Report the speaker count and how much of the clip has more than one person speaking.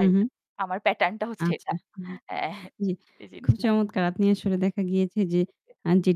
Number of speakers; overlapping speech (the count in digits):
2, about 14%